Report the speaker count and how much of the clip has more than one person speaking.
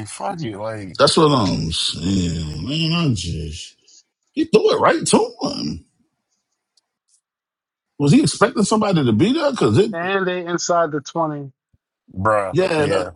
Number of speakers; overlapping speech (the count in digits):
3, about 4%